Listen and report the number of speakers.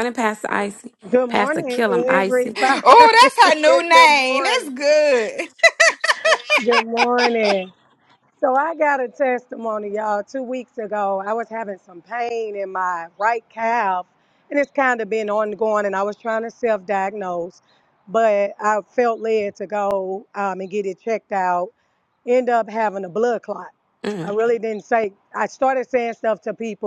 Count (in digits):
3